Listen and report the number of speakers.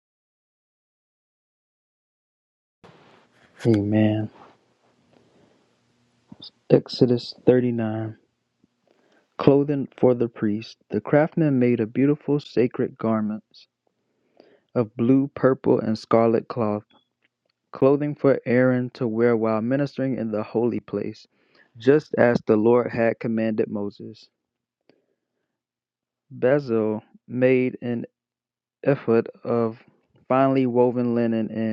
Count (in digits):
1